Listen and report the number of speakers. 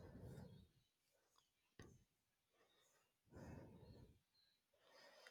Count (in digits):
0